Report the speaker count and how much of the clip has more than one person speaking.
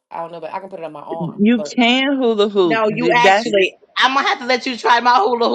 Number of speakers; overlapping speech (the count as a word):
three, about 25%